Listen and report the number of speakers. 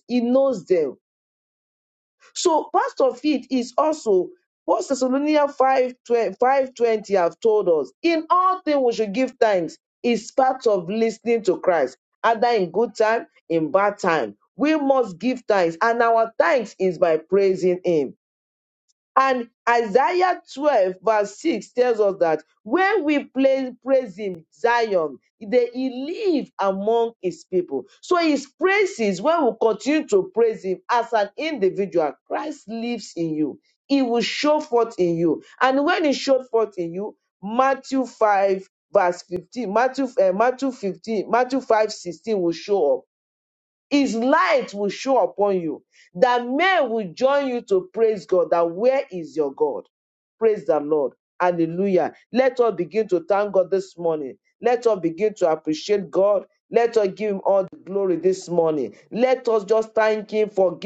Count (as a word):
one